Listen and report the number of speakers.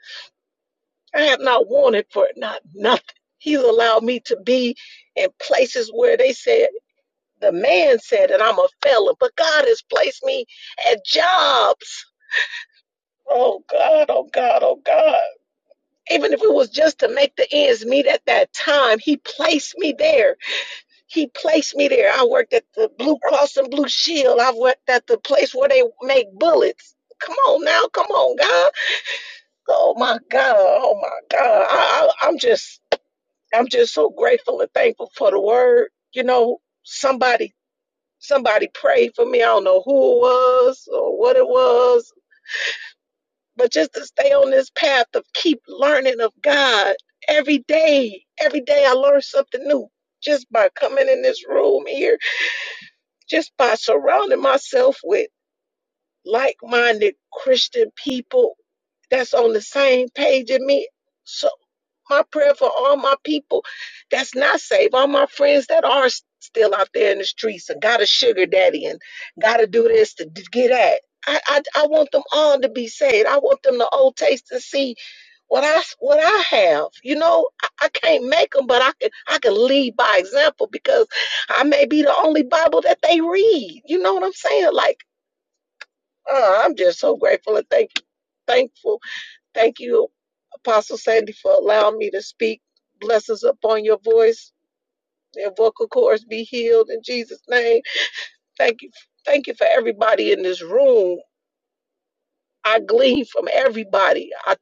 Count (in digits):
1